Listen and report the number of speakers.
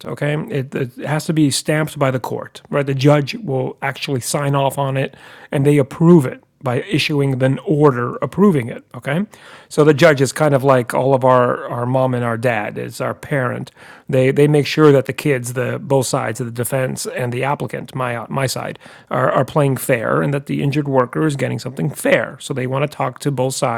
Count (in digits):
1